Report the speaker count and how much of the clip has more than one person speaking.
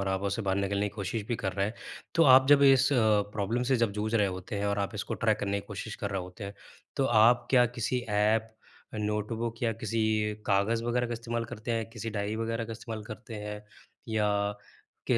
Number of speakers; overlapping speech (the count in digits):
1, no overlap